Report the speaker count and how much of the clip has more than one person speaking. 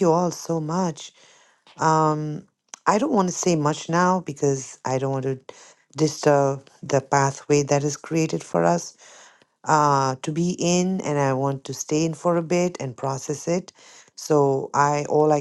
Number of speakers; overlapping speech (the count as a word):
one, no overlap